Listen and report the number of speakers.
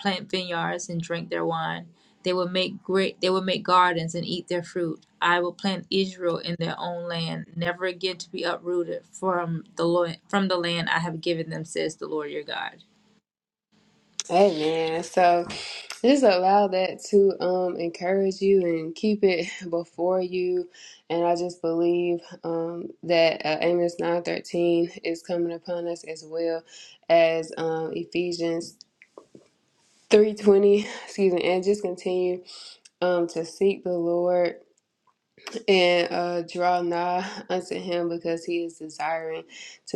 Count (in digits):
2